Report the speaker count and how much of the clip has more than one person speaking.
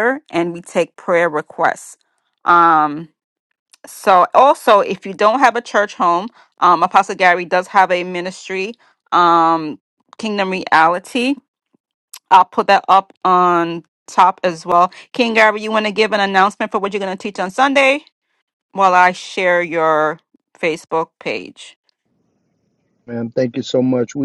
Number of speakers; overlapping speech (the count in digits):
2, no overlap